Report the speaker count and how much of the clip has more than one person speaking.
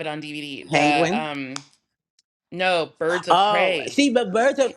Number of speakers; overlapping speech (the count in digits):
2, about 26%